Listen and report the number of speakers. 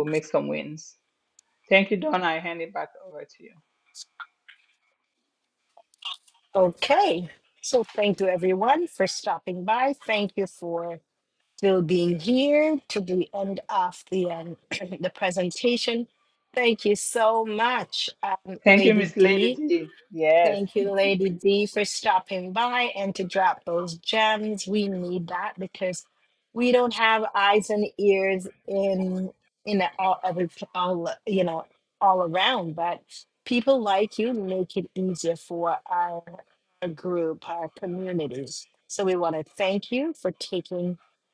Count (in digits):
2